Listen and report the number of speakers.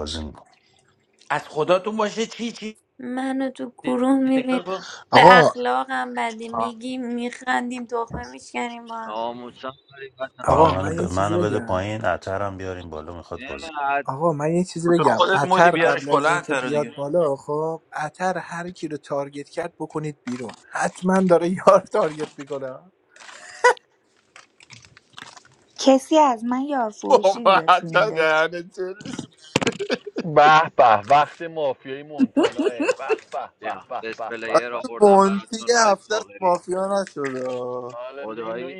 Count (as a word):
eight